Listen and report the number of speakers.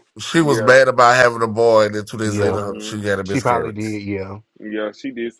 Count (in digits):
3